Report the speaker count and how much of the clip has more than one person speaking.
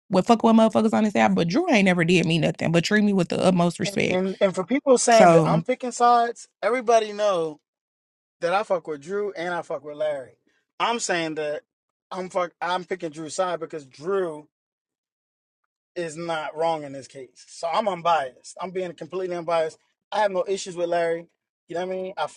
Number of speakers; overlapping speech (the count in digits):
2, about 4%